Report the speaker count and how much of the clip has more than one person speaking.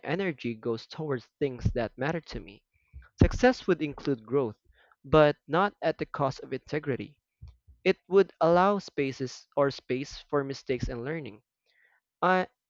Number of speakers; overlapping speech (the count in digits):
1, no overlap